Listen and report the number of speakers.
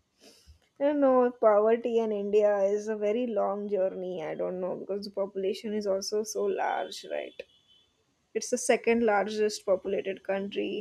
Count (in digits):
1